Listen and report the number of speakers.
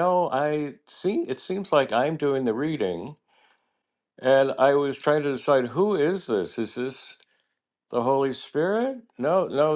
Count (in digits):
1